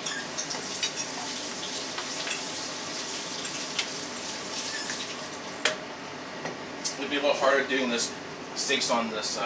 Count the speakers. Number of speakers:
one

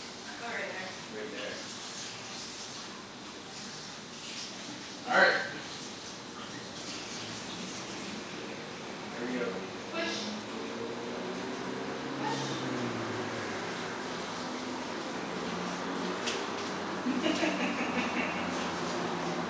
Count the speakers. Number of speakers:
two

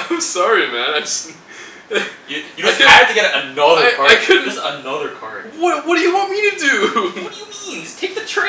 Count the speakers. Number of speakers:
two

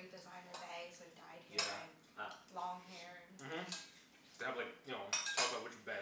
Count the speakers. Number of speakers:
two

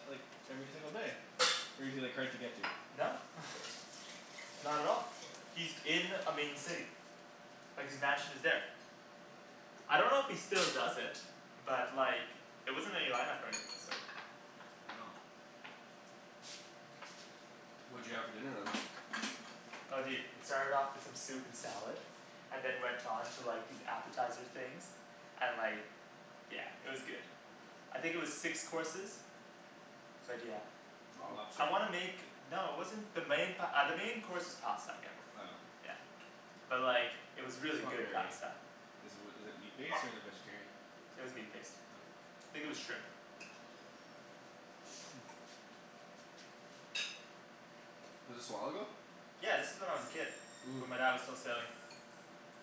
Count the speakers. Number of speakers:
three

